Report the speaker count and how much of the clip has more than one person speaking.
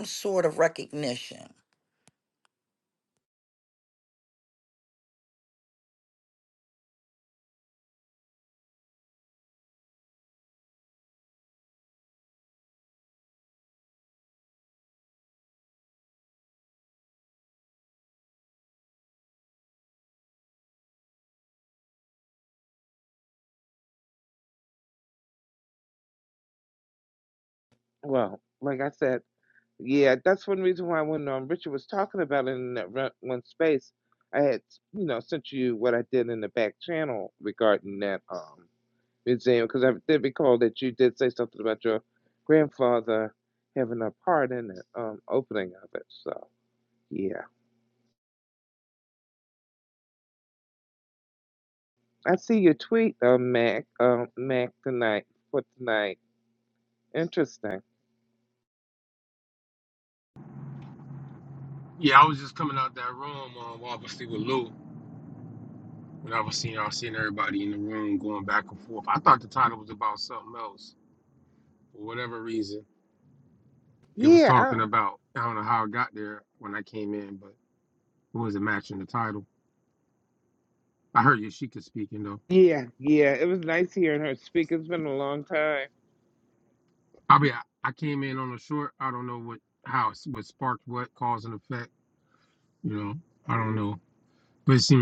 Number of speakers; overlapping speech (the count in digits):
3, about 1%